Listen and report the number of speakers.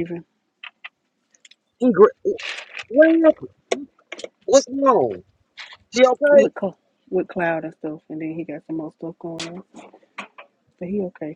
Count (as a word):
two